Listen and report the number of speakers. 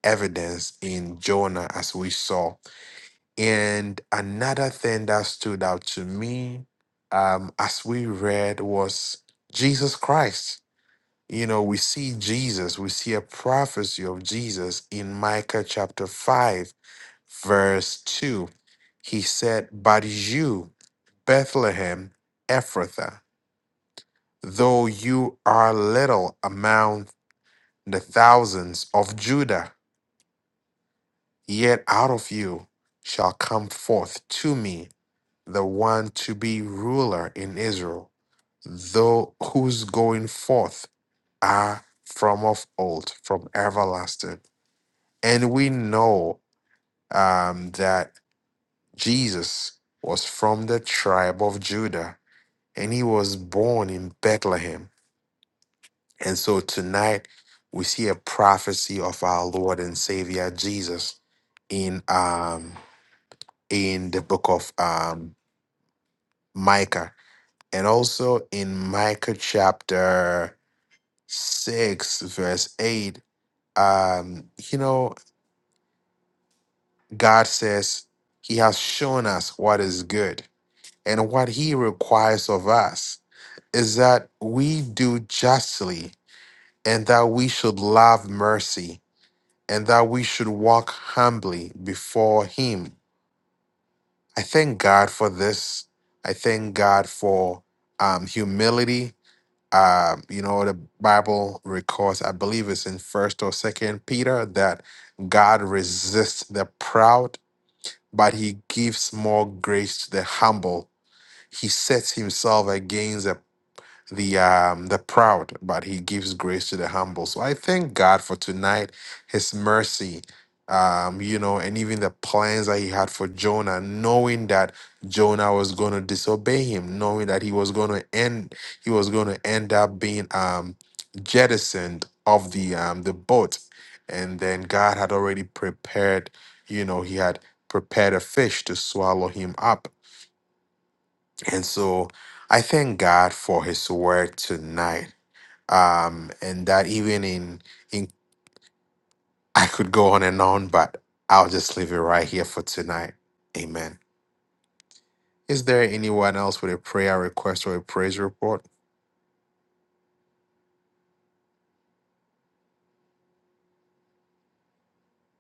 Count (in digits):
1